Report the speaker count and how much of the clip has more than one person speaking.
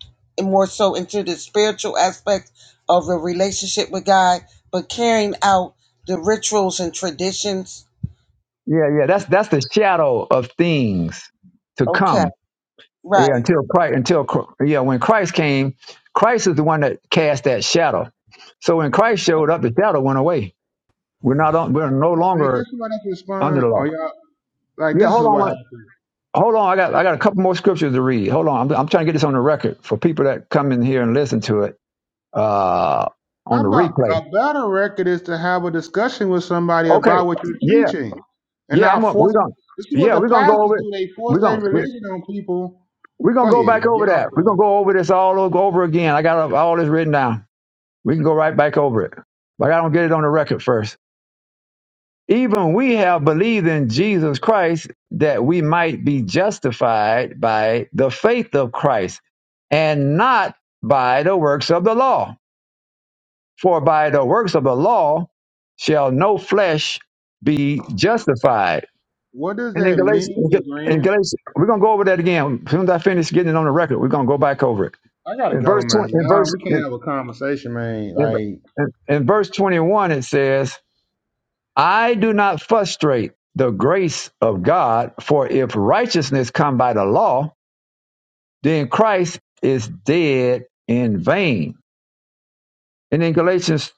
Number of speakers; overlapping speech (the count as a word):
three, about 10%